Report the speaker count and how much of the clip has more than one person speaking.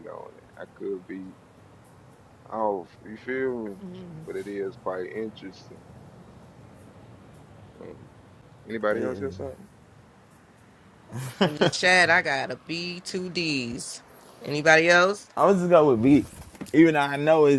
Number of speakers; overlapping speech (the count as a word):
three, no overlap